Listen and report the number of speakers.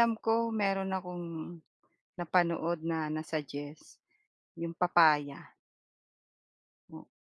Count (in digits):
1